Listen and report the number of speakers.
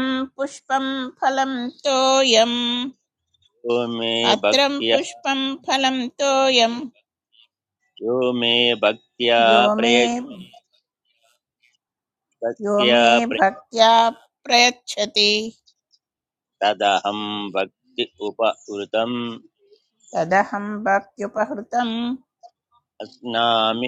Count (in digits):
2